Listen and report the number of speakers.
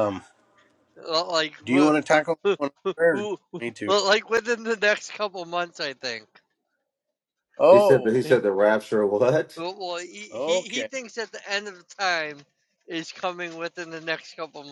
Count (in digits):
3